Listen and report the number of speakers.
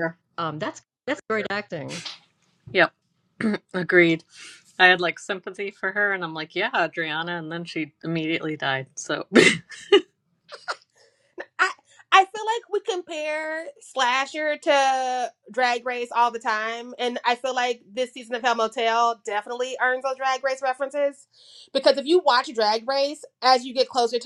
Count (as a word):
three